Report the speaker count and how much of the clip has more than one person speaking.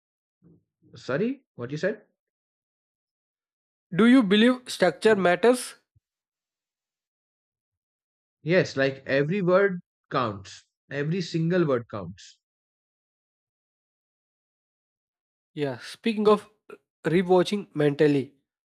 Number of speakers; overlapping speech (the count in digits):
2, no overlap